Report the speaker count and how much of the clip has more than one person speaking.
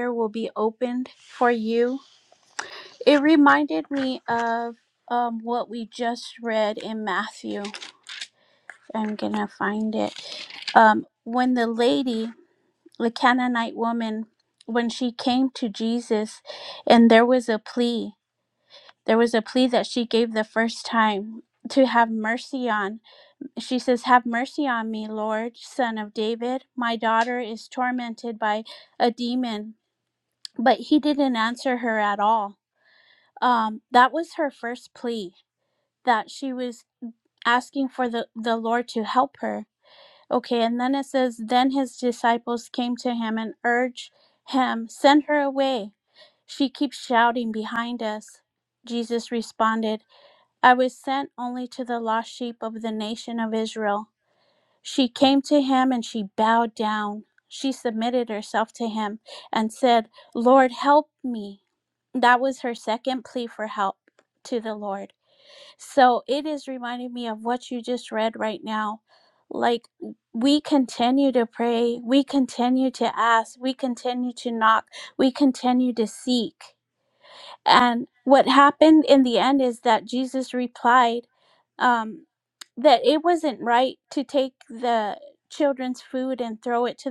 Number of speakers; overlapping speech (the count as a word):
one, no overlap